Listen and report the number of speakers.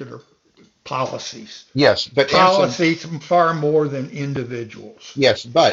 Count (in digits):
2